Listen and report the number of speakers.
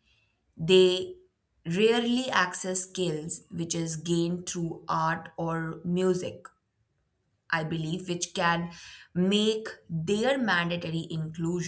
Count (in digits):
1